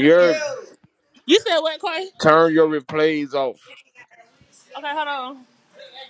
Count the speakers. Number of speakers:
2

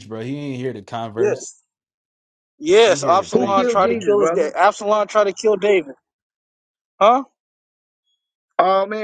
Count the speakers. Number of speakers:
3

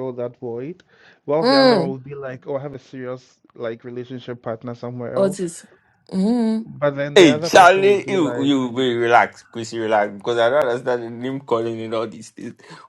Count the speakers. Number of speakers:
3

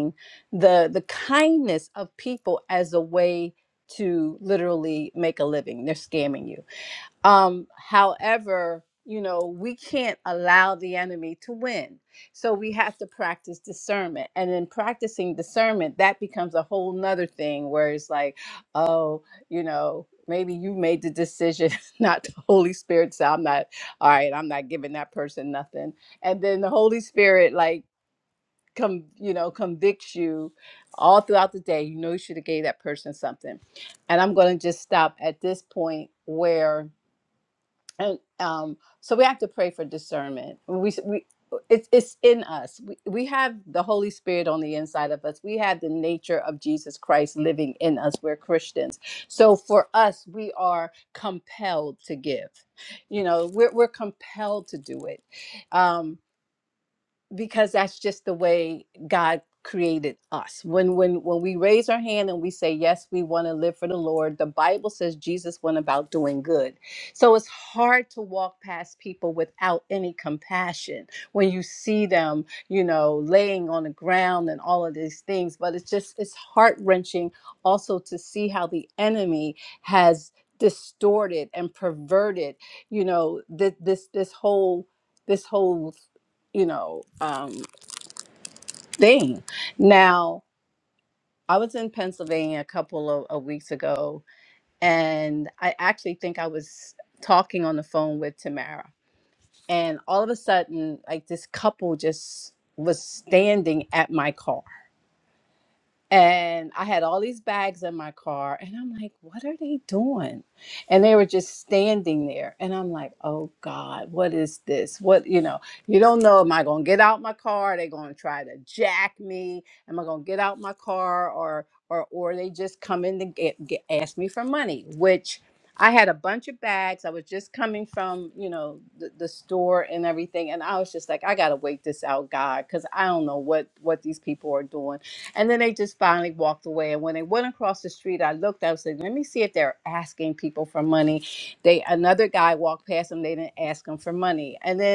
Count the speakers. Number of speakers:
1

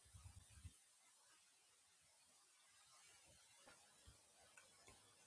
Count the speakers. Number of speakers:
0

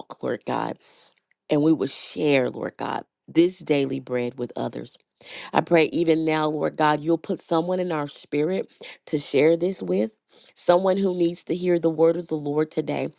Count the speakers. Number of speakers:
1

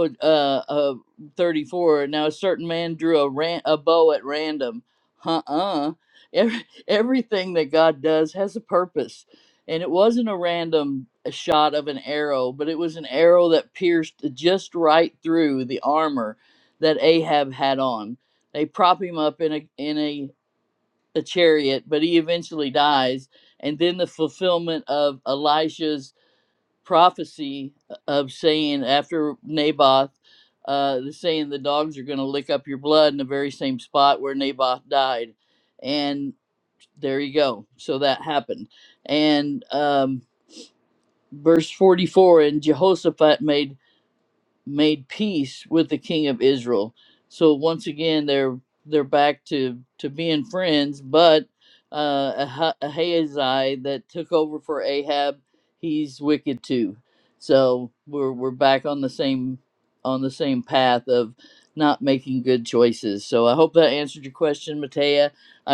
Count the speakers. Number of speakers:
1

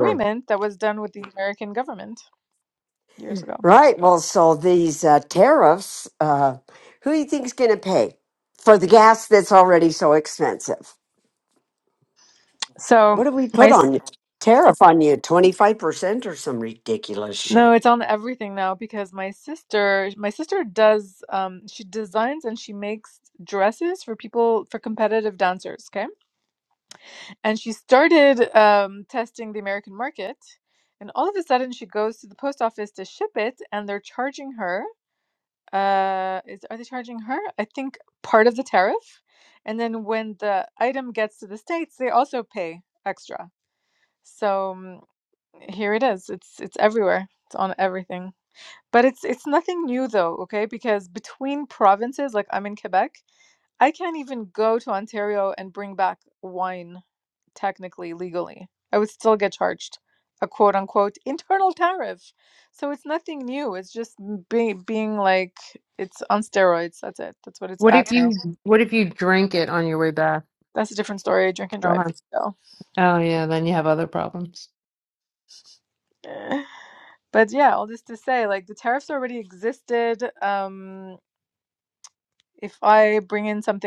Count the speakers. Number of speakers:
3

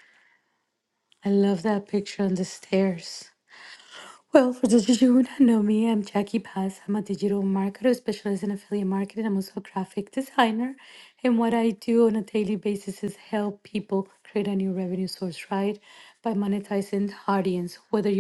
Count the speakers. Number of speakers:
1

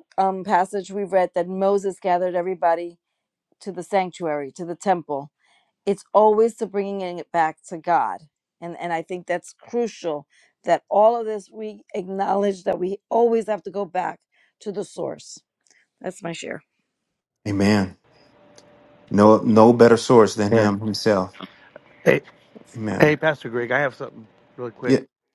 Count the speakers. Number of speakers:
3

